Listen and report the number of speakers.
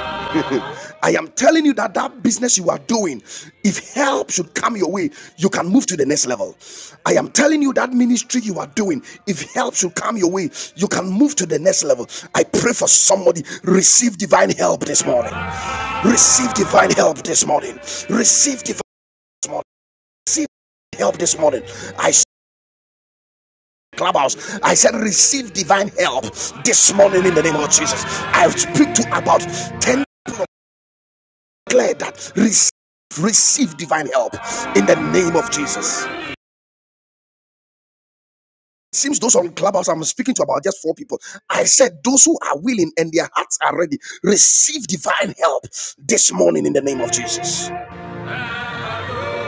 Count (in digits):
1